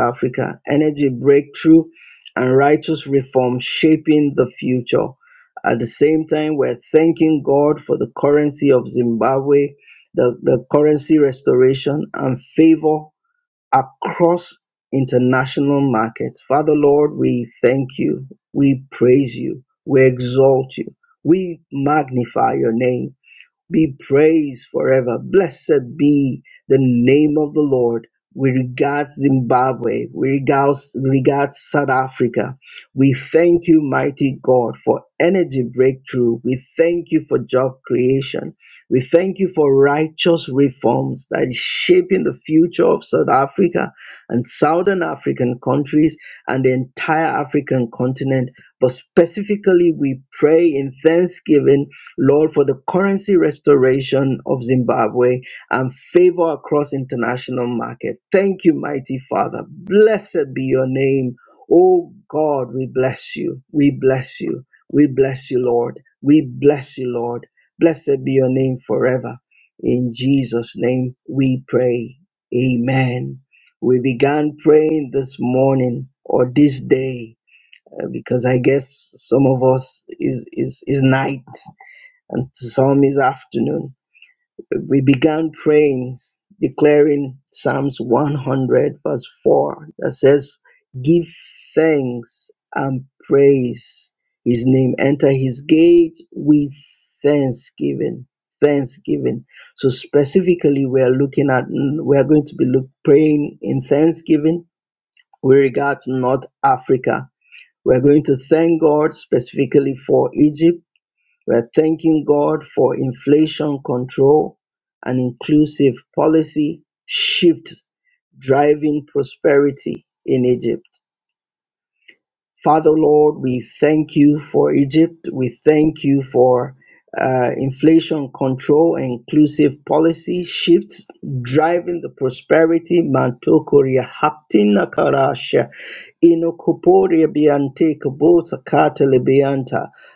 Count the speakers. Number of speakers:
1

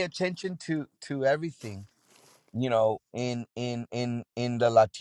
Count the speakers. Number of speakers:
1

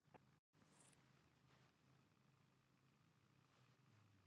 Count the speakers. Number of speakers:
0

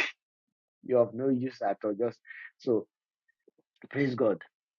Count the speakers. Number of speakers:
1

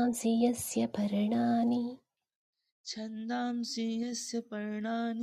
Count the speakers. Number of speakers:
2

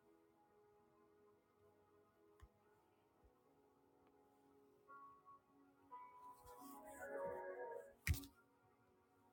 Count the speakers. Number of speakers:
0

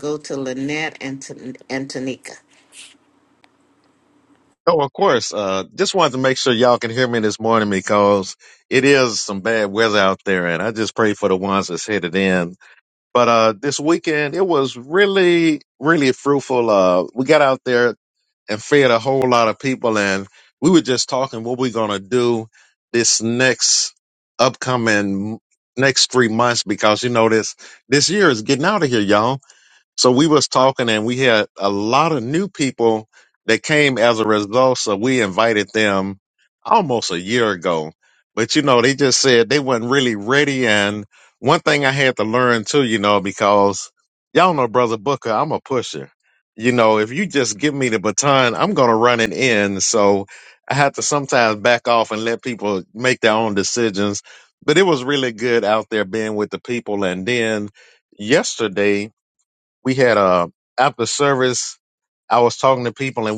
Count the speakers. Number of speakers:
2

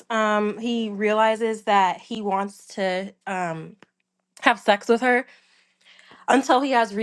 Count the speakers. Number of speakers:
1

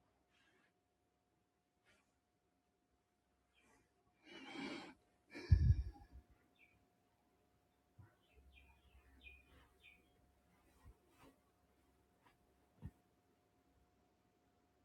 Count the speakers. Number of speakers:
0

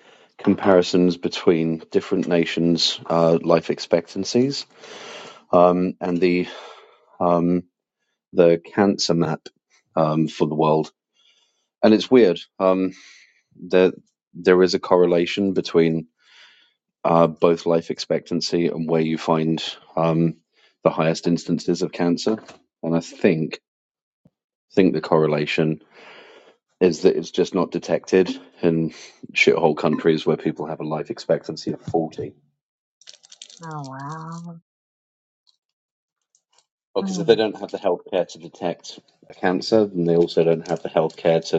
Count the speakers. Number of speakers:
2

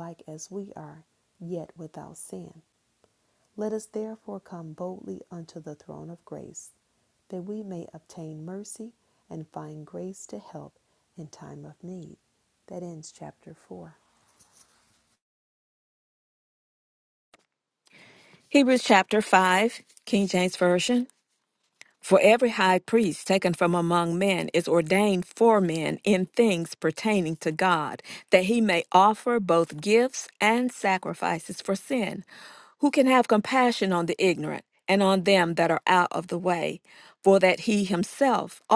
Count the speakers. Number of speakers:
2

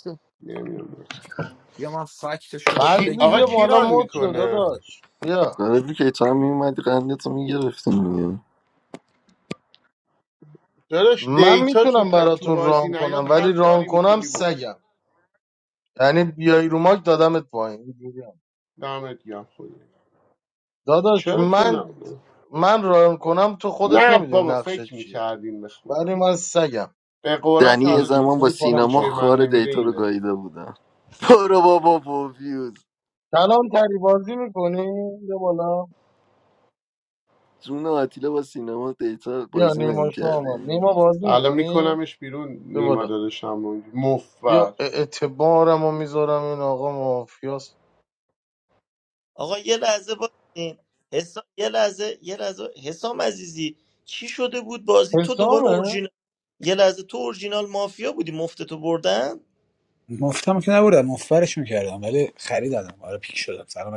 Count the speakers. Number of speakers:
6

